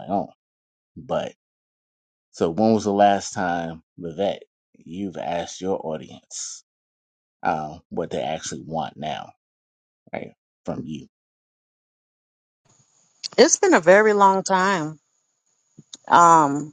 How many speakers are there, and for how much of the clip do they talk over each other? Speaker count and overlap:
two, no overlap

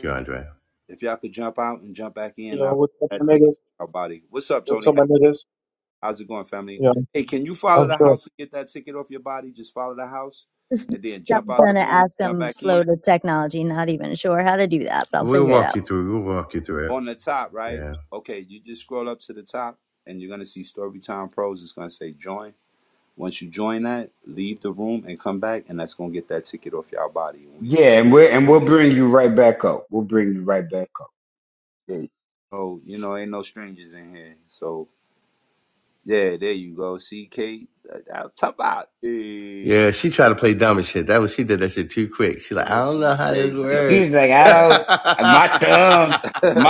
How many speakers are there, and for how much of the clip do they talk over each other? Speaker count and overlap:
five, about 15%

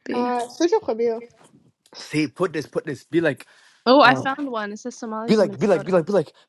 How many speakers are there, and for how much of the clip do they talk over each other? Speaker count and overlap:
three, about 18%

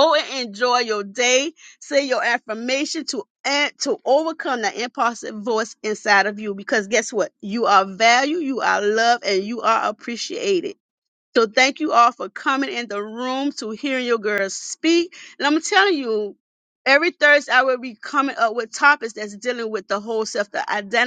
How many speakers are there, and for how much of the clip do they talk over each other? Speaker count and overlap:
one, no overlap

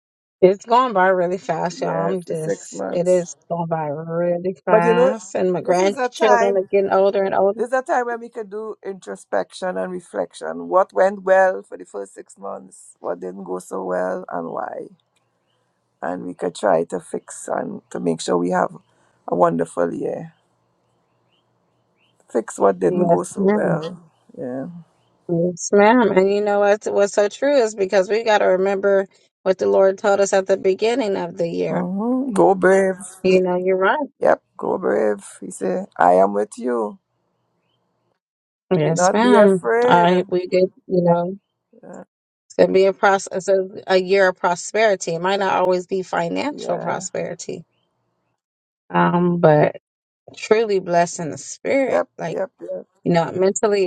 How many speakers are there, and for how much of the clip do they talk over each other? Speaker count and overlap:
two, about 10%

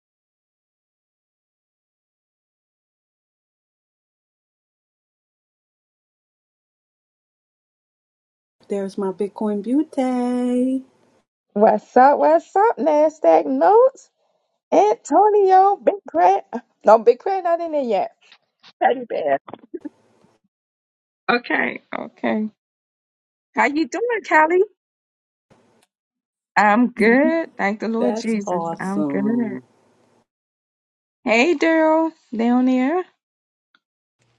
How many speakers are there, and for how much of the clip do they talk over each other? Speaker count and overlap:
two, about 4%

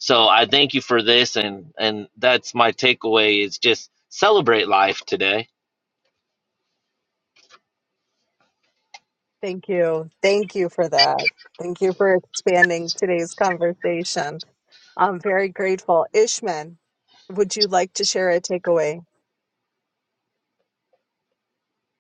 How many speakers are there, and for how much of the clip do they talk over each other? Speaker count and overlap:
two, no overlap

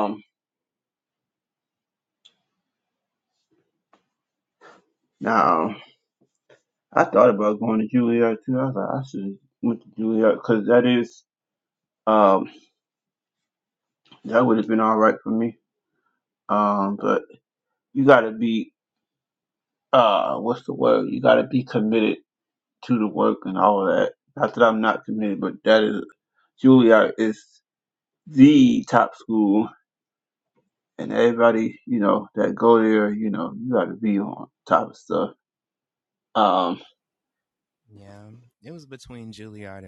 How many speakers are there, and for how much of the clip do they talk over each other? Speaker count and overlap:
two, no overlap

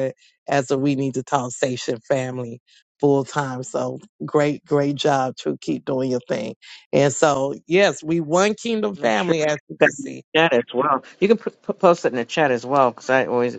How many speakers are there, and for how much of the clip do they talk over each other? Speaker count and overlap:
two, about 7%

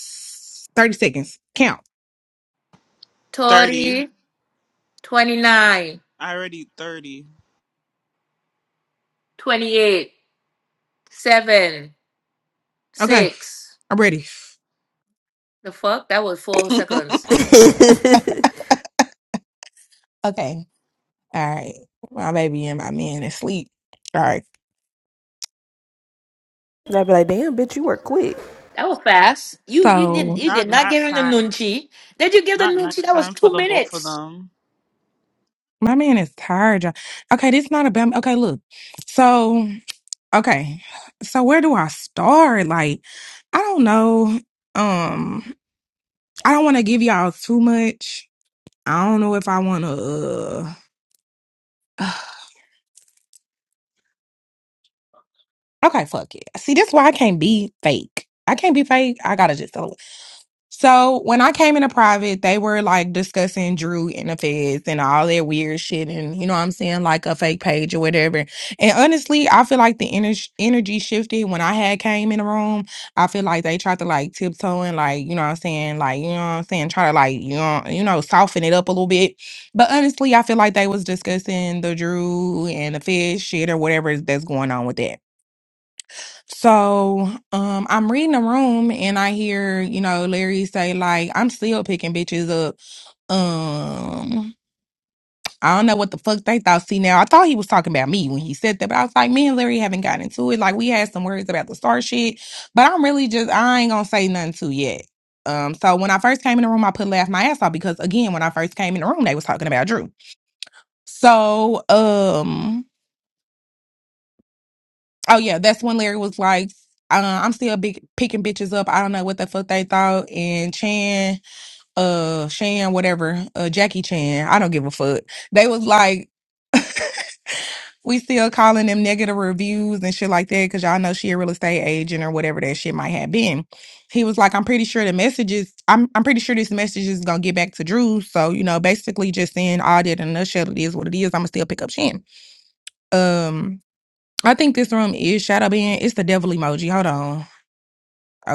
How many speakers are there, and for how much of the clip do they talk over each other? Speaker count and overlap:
four, about 3%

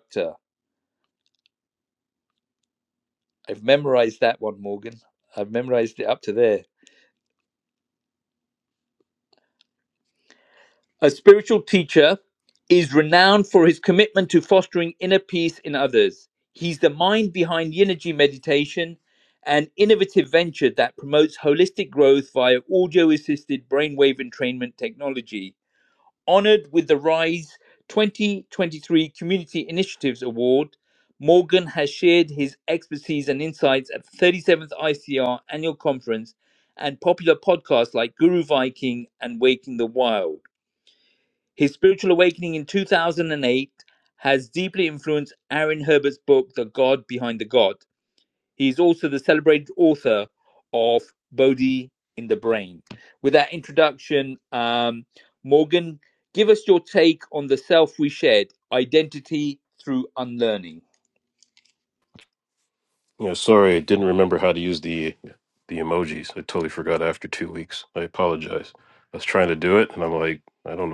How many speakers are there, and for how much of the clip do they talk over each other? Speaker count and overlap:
two, no overlap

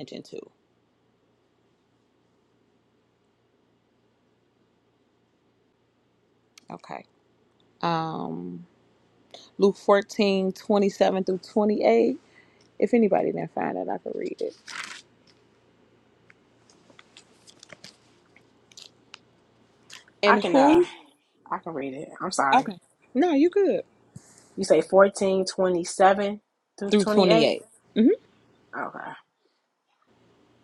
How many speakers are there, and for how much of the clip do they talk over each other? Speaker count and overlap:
two, about 4%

